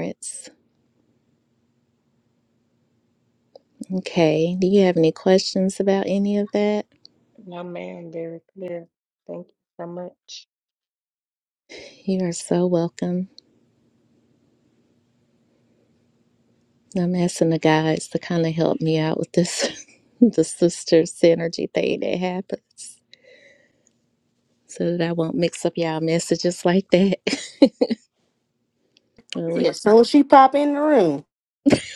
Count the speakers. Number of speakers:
three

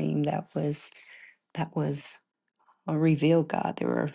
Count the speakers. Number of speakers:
one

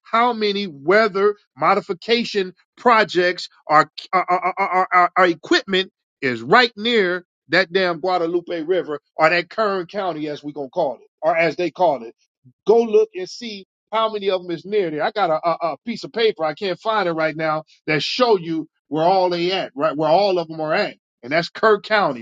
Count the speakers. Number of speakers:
one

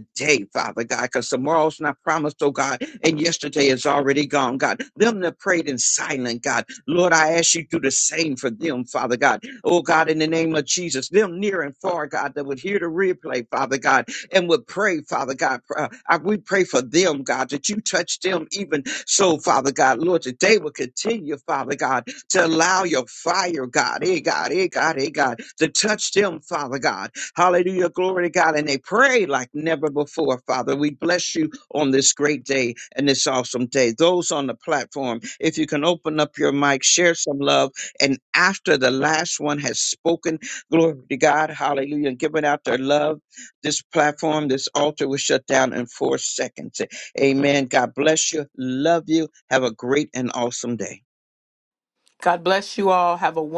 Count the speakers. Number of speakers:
two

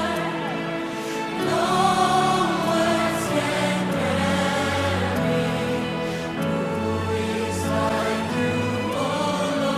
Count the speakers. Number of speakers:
zero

